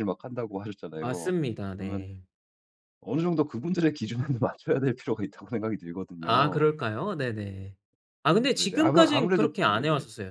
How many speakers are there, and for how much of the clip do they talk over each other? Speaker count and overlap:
two, about 24%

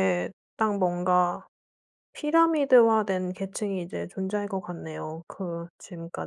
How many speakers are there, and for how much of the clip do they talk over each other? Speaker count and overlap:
one, no overlap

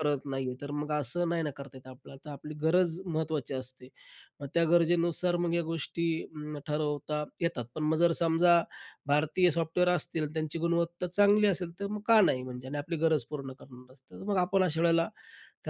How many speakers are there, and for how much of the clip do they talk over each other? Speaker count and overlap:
one, no overlap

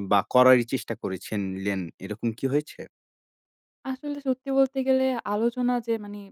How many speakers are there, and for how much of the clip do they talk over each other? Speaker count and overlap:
two, no overlap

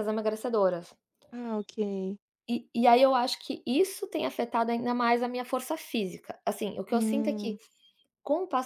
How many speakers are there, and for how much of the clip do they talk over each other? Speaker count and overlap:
two, about 7%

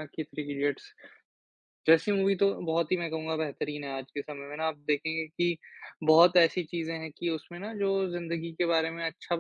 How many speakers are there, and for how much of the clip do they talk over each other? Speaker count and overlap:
one, no overlap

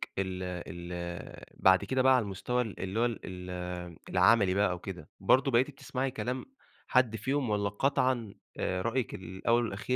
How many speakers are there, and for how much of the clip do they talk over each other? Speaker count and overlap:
one, no overlap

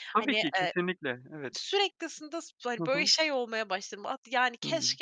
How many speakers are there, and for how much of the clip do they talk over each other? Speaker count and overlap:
two, about 23%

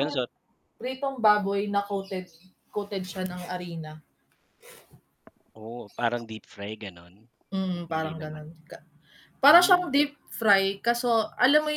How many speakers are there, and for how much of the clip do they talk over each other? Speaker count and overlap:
two, about 11%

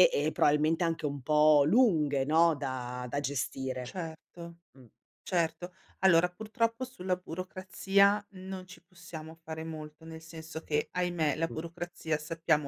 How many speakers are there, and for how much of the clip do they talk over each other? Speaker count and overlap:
two, about 1%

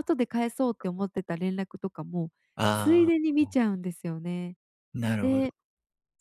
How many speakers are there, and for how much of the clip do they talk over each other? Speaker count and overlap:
two, about 12%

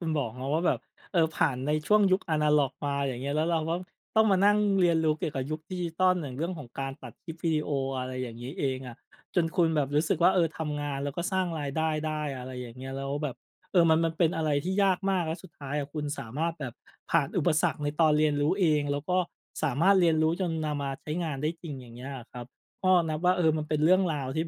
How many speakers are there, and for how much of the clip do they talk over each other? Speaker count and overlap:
one, no overlap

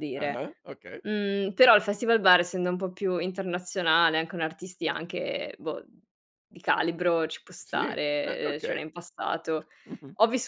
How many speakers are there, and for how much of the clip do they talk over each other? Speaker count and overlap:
two, about 13%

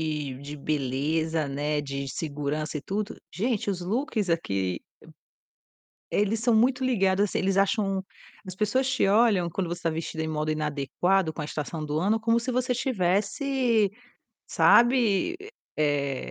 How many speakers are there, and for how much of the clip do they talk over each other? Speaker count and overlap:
one, no overlap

